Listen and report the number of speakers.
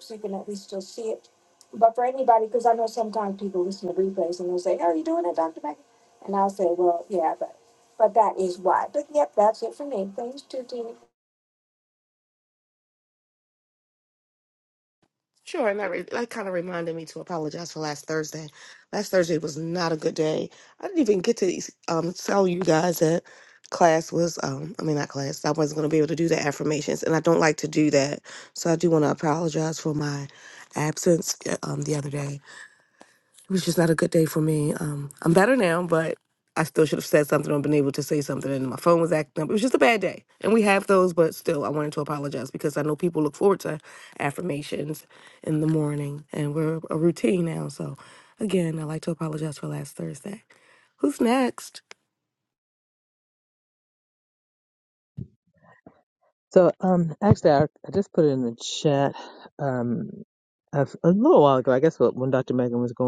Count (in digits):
3